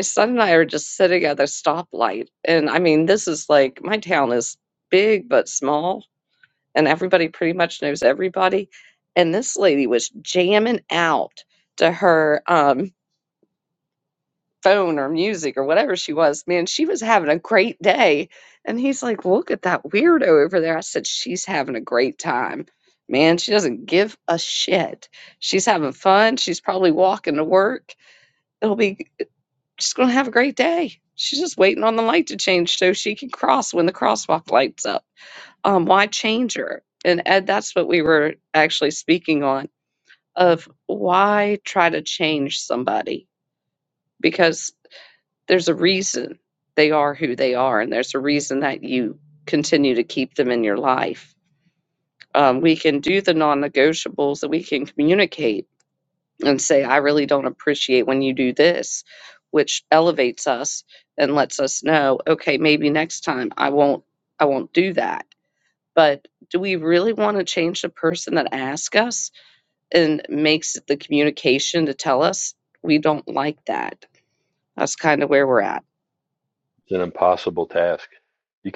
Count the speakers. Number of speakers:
two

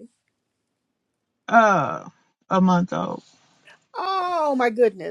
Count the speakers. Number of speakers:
two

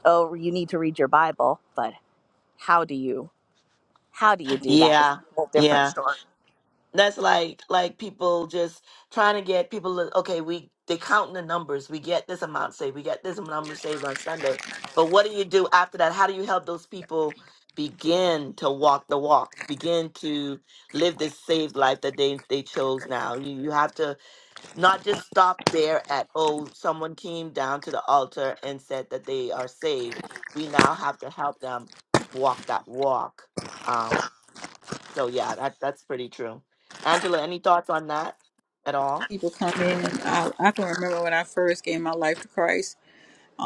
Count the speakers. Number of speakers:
three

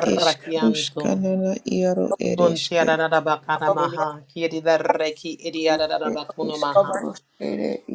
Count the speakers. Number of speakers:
two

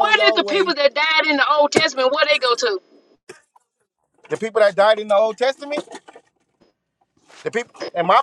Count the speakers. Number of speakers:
two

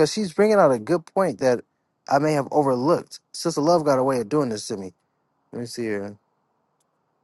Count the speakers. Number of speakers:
one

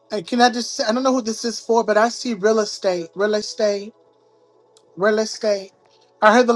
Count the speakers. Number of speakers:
one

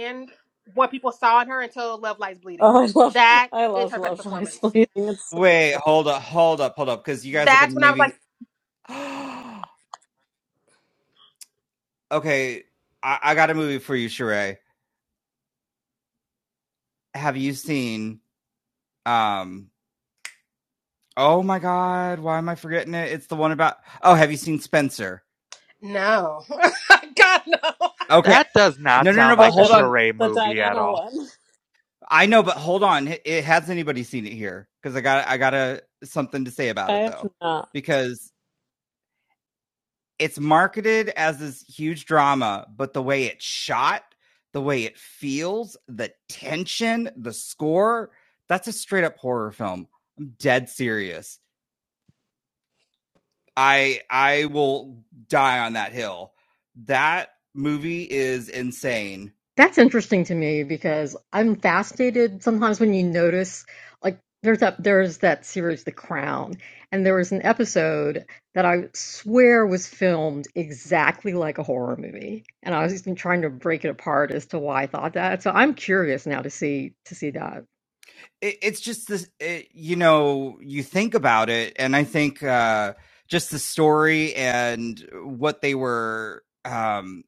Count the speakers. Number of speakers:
five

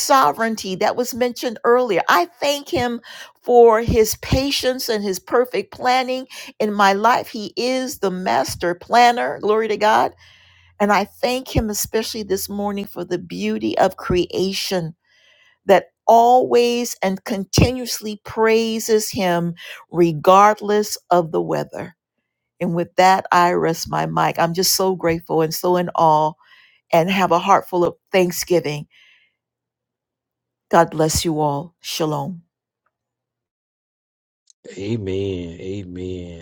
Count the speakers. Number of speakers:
two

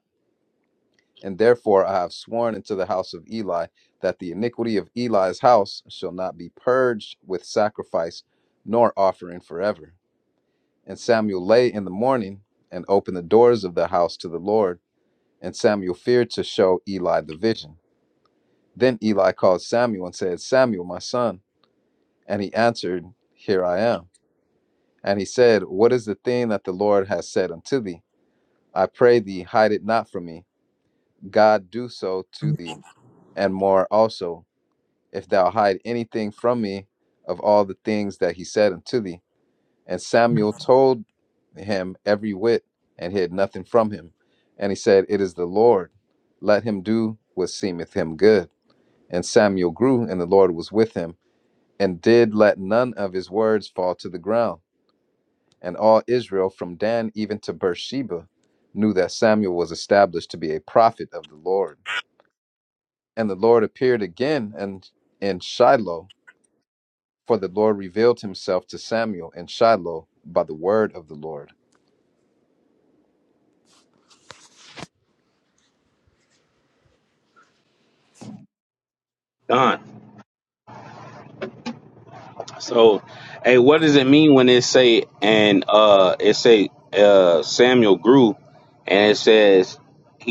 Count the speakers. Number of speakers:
two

